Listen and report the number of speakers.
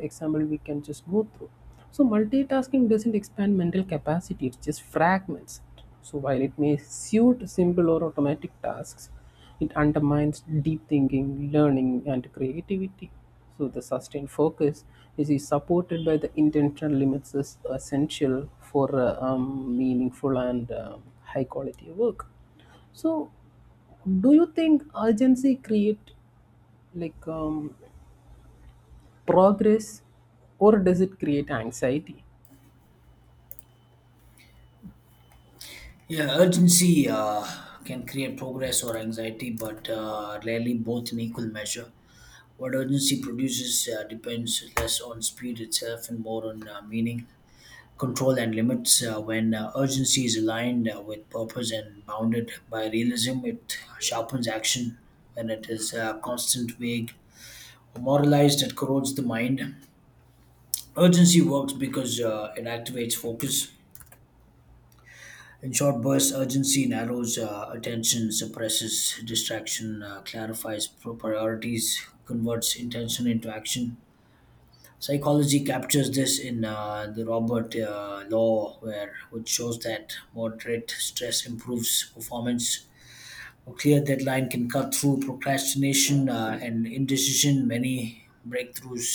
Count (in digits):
2